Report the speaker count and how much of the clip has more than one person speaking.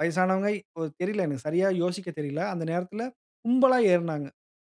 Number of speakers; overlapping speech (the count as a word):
one, no overlap